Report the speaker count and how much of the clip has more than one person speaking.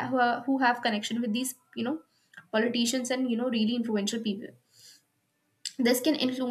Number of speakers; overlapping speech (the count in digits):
1, no overlap